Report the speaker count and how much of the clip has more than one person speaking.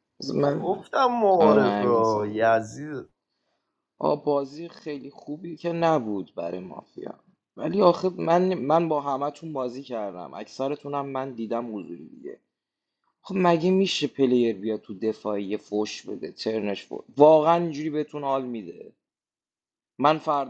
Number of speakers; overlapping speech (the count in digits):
2, about 7%